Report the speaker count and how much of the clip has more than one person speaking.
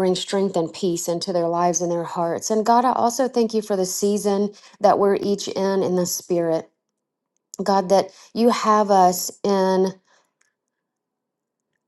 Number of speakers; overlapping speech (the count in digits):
1, no overlap